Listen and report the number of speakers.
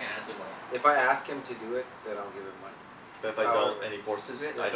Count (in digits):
3